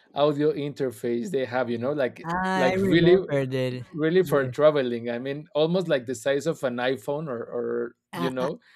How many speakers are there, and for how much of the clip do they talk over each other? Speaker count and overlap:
2, about 19%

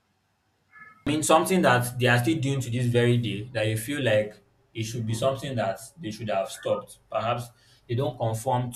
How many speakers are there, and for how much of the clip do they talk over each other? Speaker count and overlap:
1, no overlap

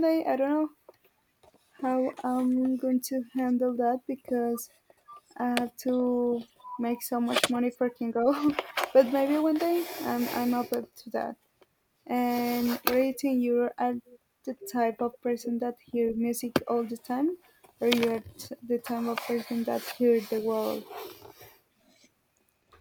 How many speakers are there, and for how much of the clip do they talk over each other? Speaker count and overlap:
1, no overlap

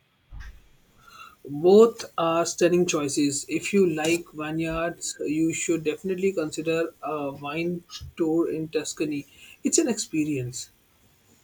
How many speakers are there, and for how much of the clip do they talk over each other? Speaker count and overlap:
1, no overlap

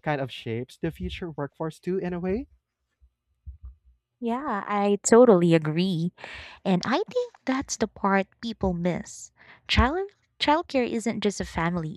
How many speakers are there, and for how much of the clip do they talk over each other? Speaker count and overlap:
2, no overlap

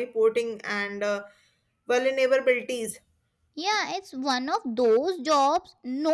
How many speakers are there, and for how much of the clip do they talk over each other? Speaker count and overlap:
2, no overlap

